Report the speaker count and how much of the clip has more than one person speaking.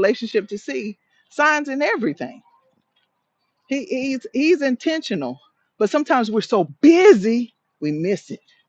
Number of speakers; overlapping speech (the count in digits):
1, no overlap